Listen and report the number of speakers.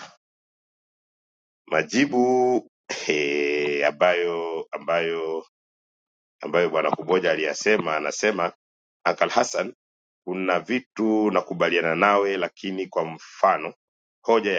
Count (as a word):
one